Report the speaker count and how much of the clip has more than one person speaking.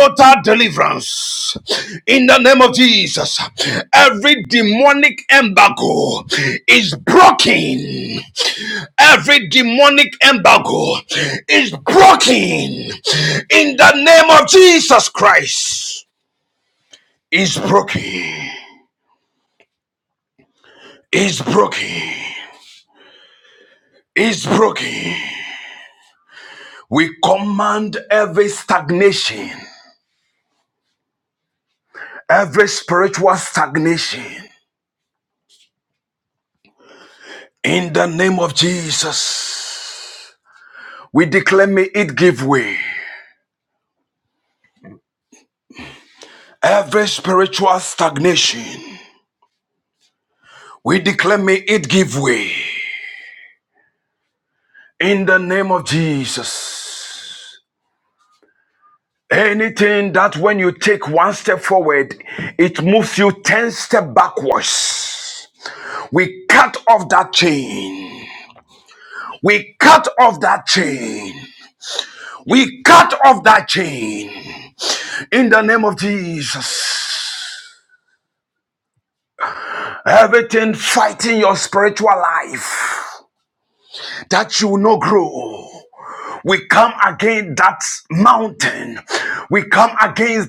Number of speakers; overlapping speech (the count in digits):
1, no overlap